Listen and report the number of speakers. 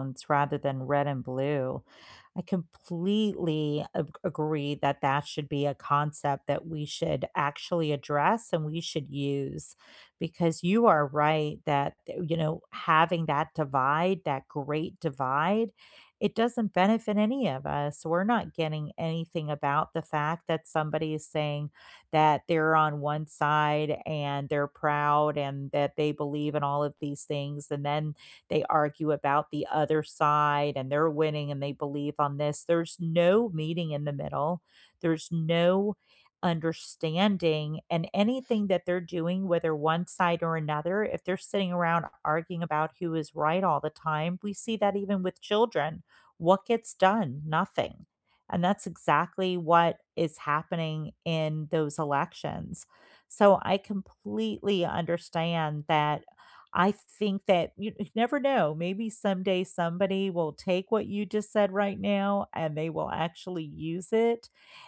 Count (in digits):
1